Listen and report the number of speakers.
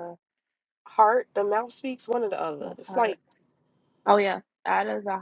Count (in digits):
2